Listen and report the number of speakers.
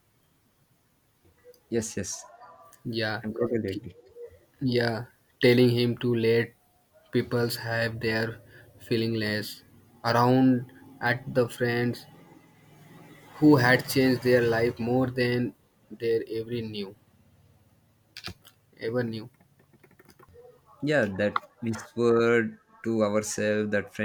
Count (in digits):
2